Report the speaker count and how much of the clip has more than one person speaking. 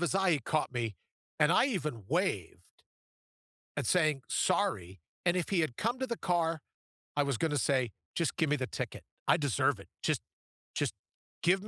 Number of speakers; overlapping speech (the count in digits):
1, no overlap